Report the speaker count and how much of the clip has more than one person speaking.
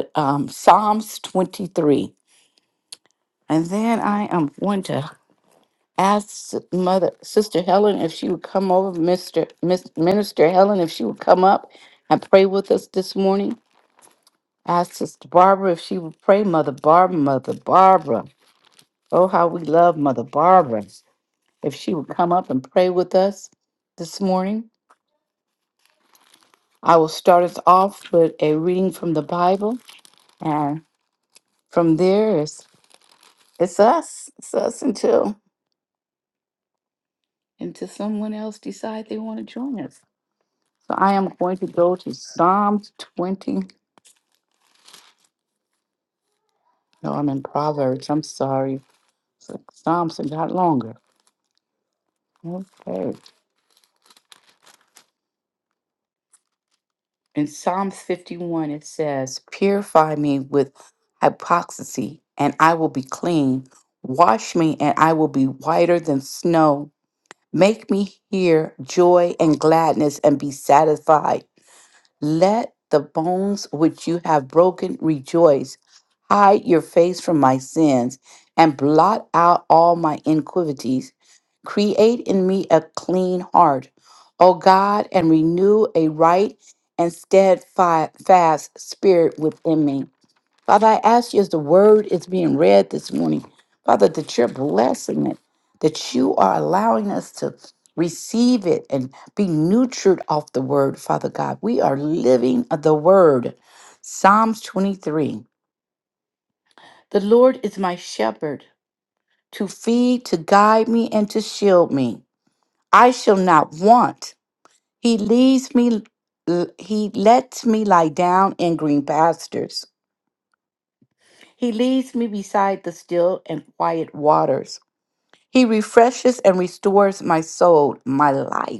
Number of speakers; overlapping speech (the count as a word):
one, no overlap